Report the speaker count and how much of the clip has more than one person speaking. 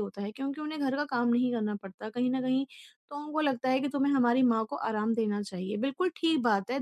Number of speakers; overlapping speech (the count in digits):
1, no overlap